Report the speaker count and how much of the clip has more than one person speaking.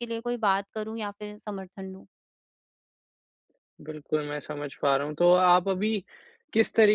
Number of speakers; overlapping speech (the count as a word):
two, no overlap